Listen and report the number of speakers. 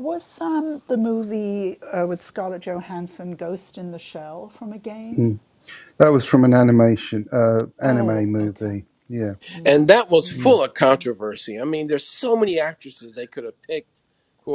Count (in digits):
3